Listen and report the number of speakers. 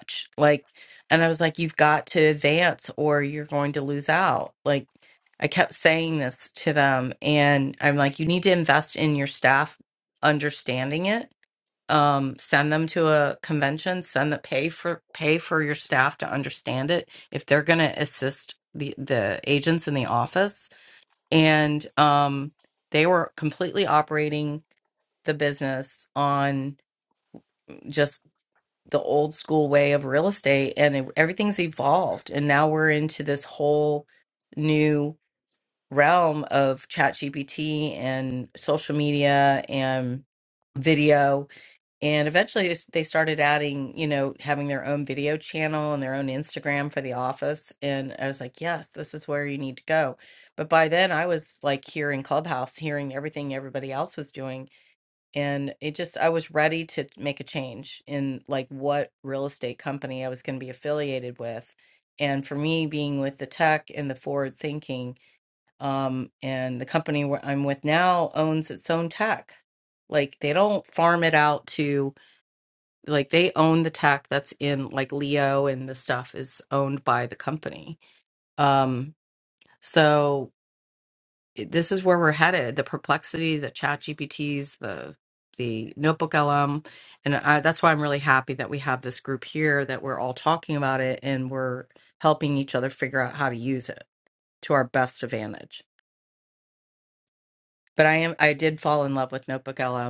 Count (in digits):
1